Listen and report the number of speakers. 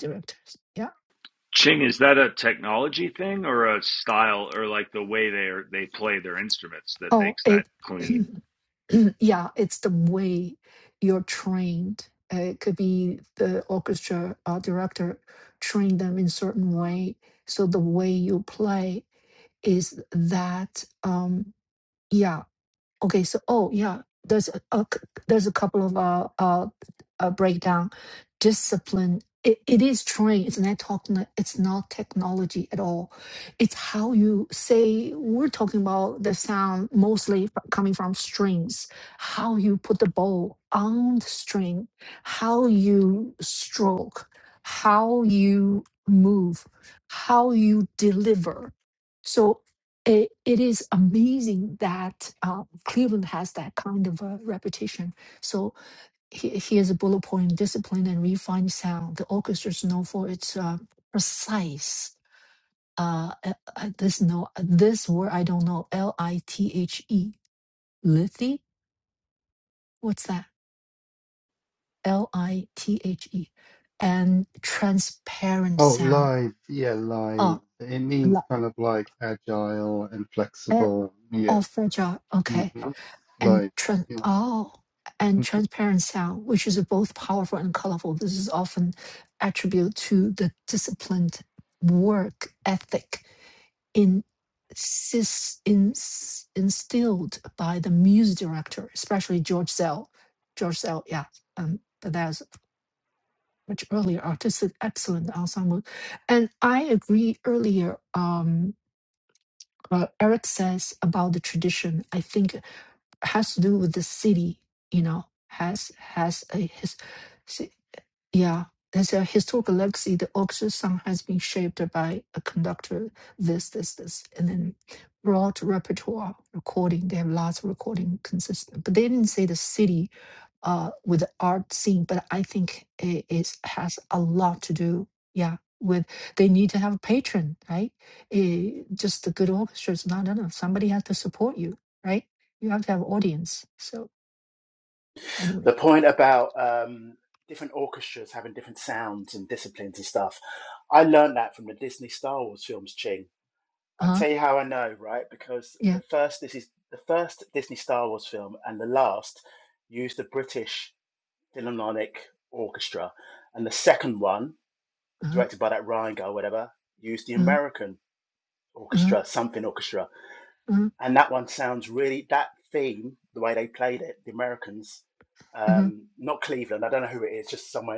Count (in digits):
4